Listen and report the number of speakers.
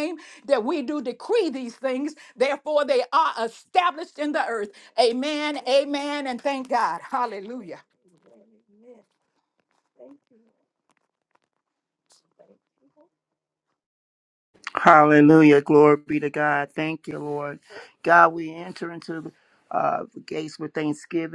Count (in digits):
2